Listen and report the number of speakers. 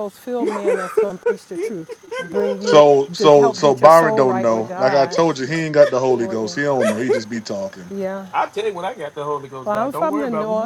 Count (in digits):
3